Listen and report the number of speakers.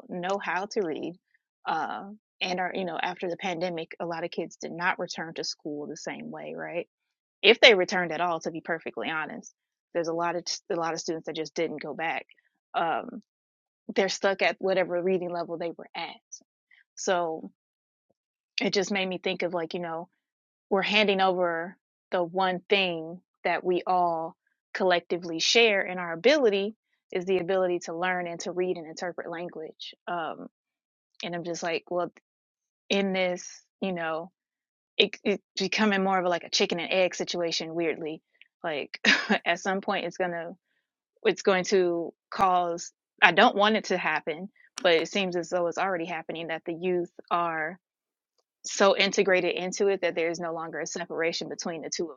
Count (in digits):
1